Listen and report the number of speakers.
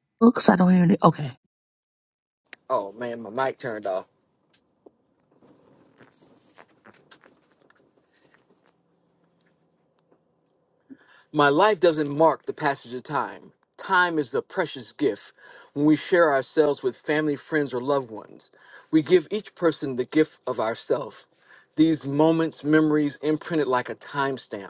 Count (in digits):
2